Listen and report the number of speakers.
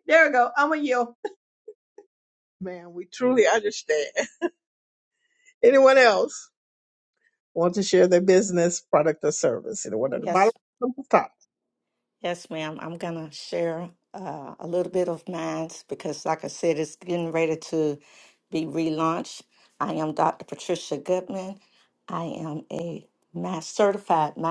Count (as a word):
three